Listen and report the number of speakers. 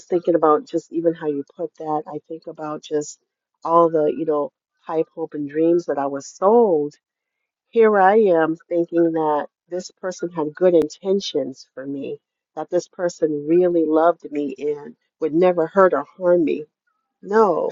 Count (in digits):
1